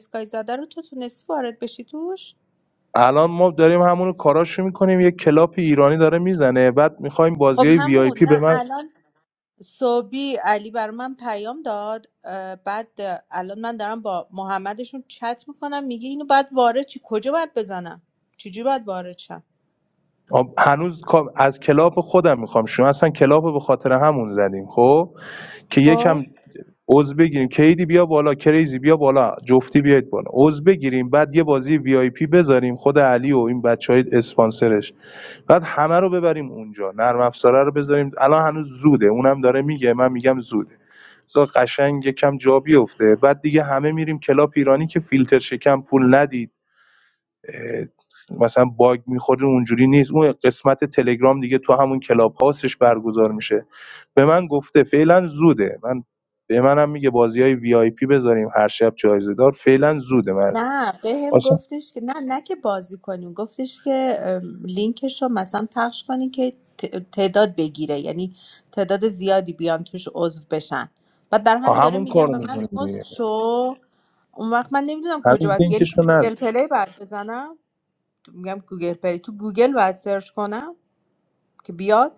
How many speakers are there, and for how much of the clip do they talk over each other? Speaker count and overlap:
2, about 5%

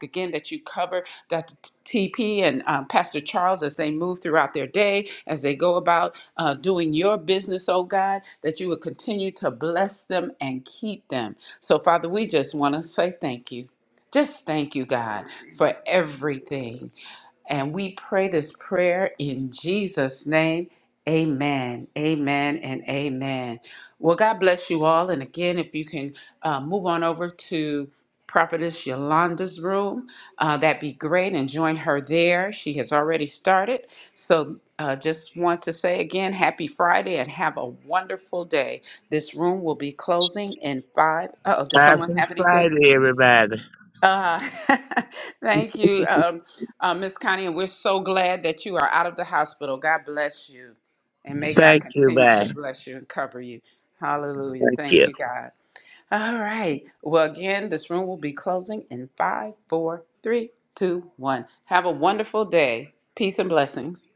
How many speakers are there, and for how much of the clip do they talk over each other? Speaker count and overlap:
2, about 4%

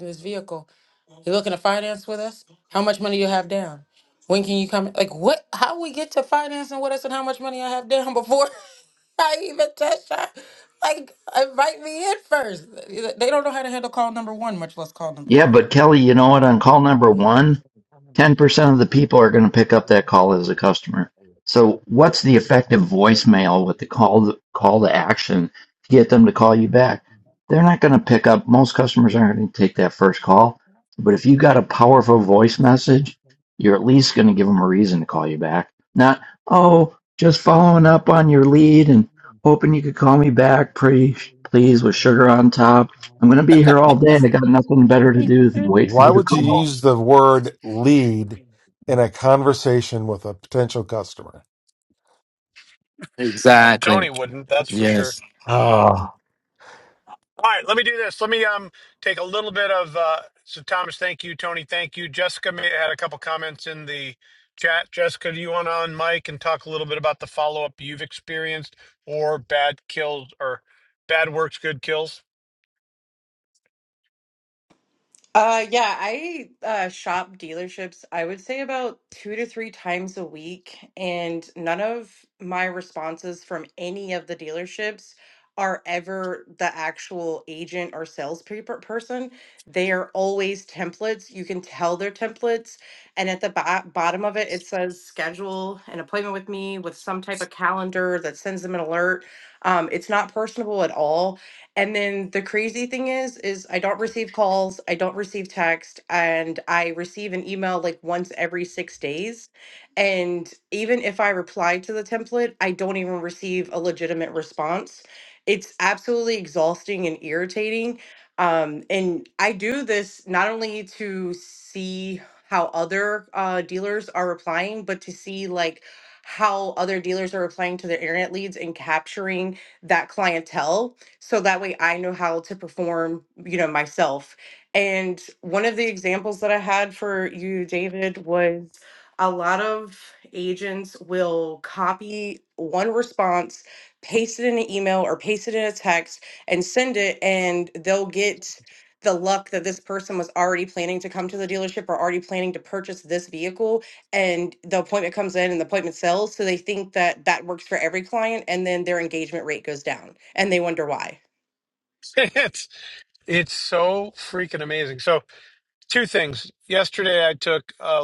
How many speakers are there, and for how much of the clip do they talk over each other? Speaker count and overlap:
6, about 1%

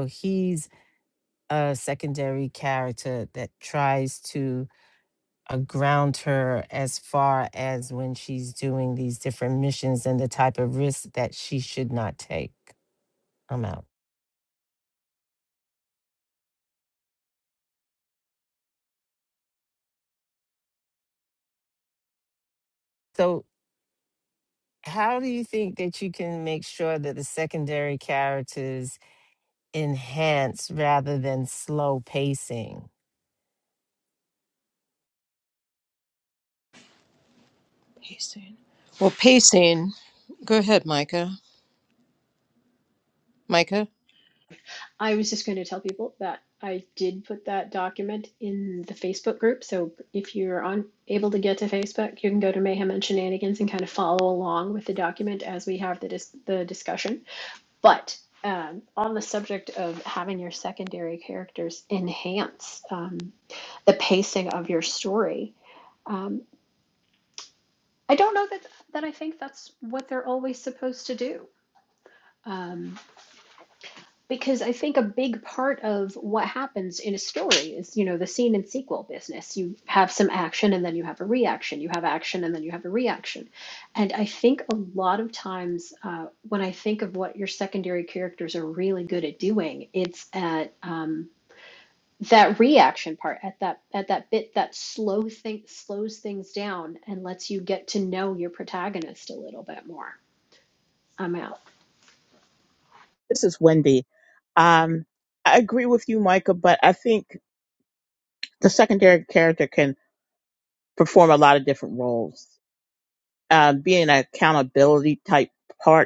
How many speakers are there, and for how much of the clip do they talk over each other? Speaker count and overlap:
4, no overlap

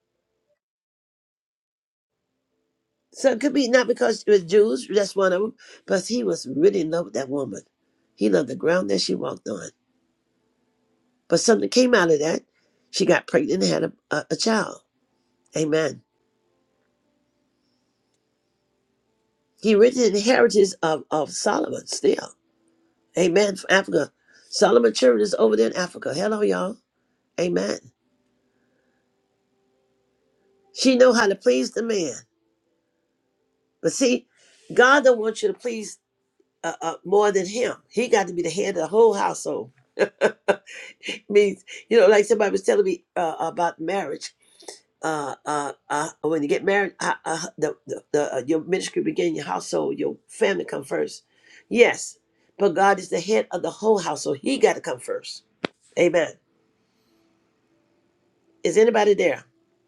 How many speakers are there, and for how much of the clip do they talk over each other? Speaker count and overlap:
1, no overlap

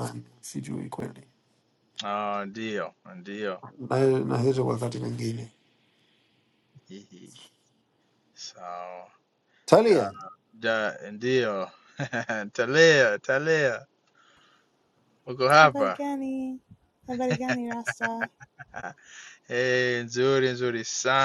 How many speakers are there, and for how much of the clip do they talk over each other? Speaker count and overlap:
3, about 3%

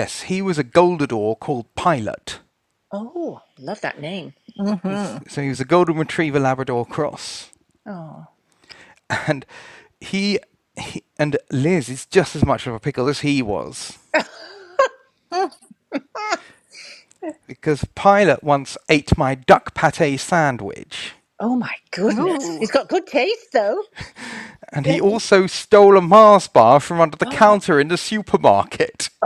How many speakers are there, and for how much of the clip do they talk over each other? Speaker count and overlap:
3, about 3%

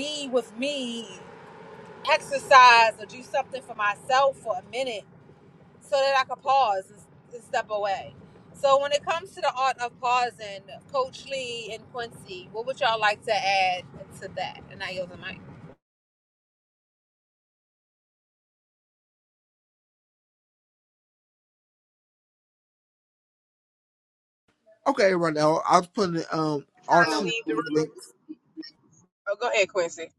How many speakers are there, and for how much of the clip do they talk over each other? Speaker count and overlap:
3, about 3%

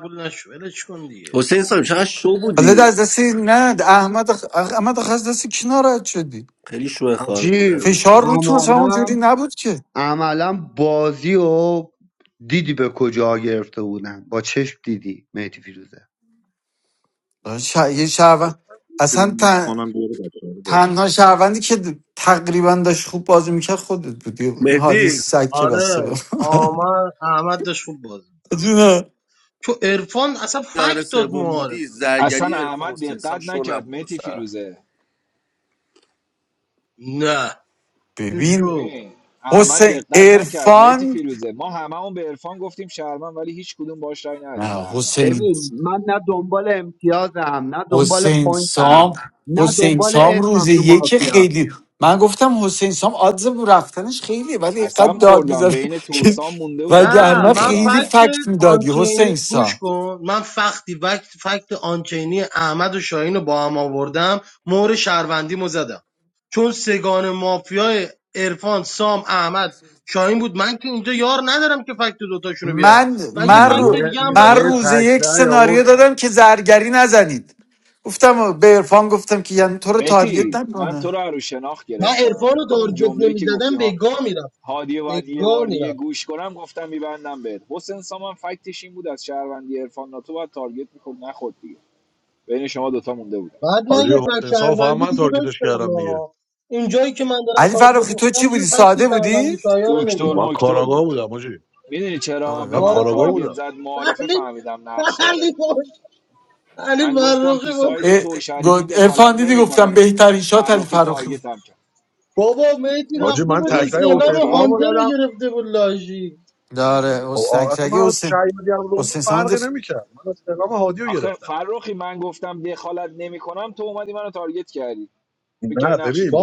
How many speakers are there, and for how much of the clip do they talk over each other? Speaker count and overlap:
7, about 31%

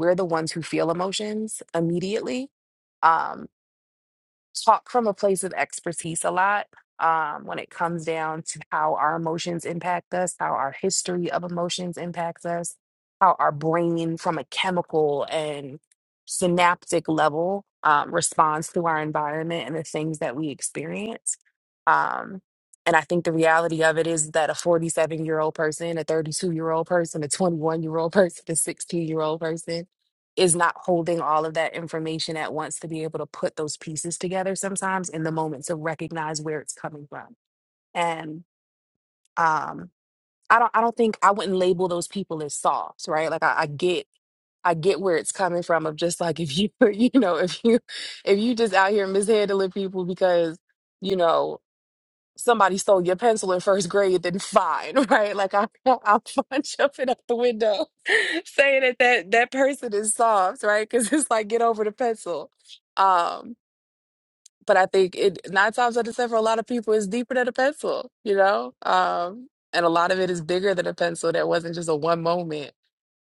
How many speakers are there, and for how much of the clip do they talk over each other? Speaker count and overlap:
1, no overlap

